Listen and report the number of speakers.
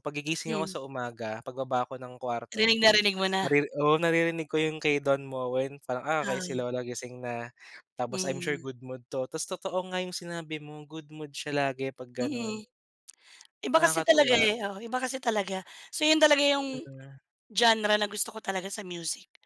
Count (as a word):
two